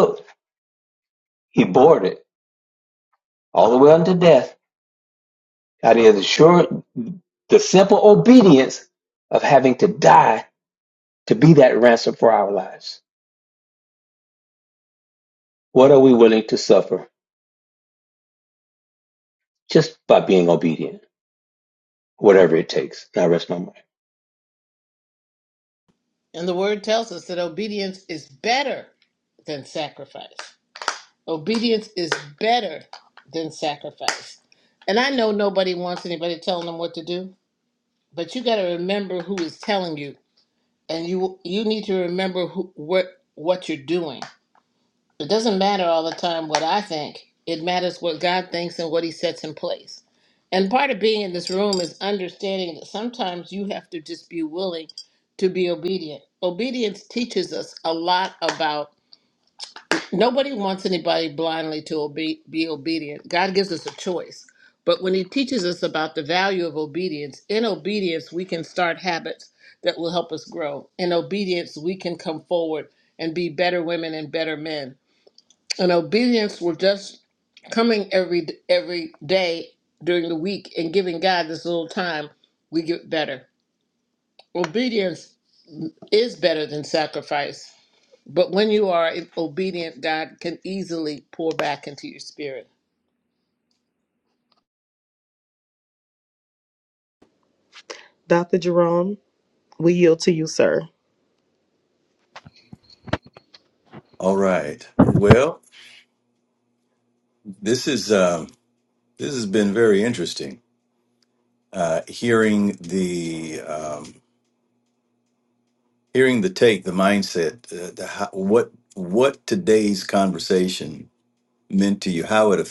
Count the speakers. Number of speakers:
four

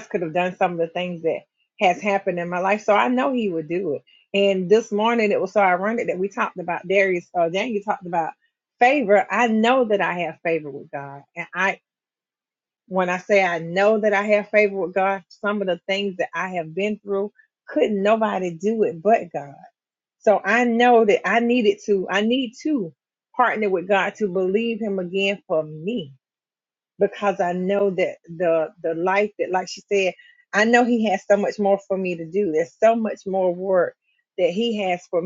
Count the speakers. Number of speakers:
one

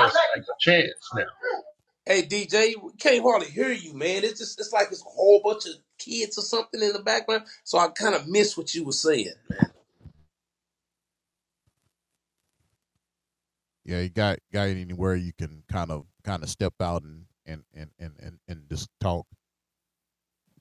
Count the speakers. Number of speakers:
three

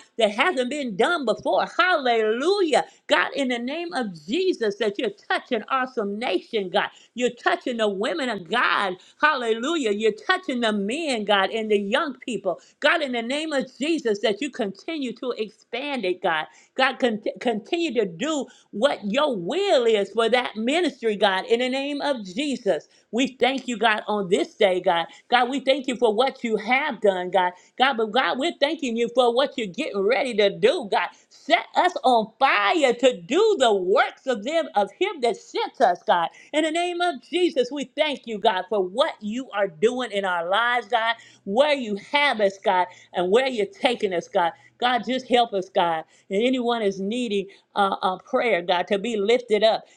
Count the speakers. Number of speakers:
one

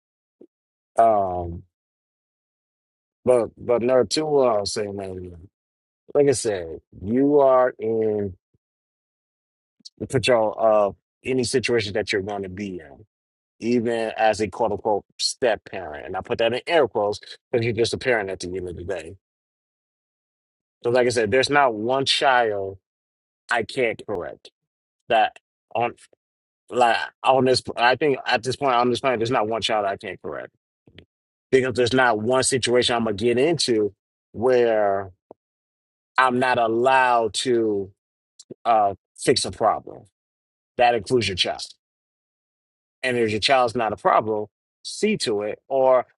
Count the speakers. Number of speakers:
one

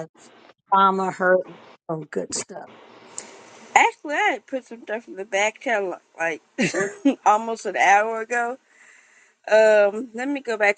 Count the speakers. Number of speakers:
two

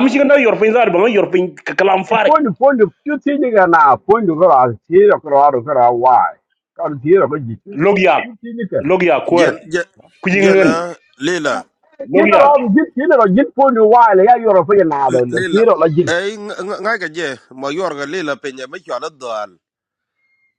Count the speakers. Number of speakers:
three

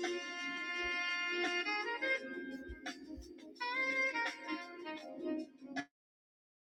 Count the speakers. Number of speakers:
zero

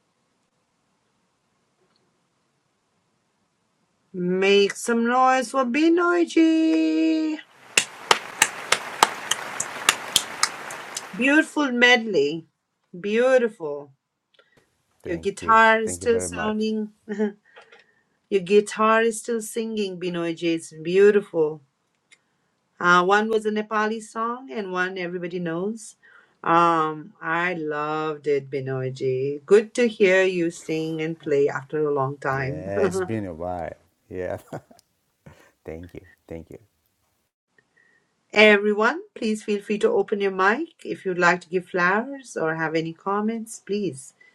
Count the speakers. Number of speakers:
two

